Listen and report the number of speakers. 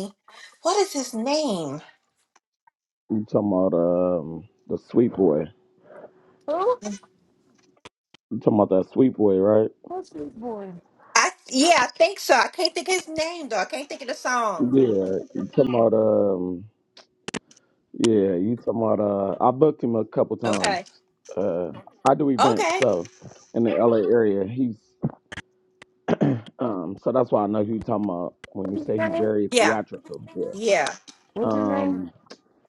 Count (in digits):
3